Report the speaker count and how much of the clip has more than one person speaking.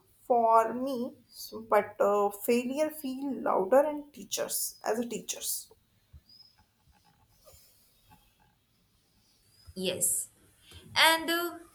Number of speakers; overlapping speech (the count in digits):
2, no overlap